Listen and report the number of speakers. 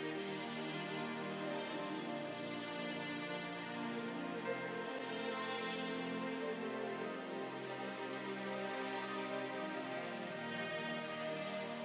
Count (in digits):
0